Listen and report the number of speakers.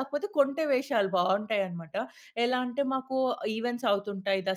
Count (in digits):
1